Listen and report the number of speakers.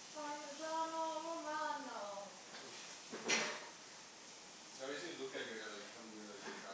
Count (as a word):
two